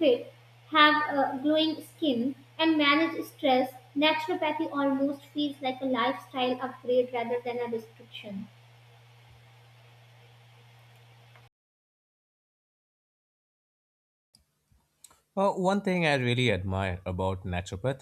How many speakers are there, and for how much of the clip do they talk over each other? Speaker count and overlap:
two, no overlap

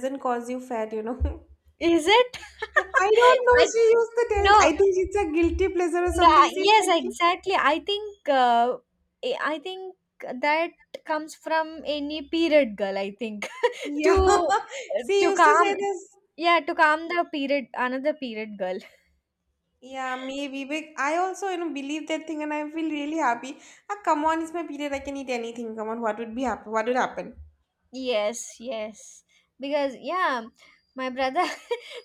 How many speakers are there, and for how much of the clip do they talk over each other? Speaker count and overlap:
two, about 7%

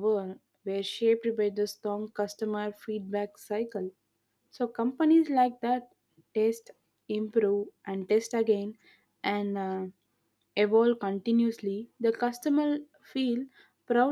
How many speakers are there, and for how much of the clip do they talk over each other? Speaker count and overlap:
one, no overlap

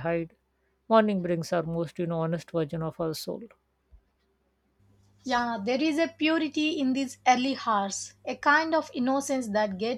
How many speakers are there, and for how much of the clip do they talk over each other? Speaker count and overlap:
two, no overlap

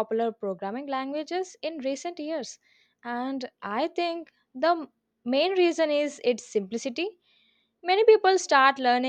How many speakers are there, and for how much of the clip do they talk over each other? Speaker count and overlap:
one, no overlap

